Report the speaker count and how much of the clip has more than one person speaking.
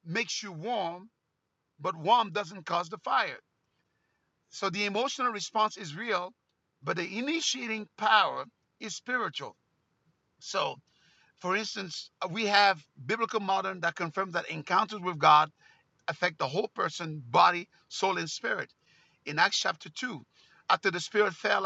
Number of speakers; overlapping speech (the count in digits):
1, no overlap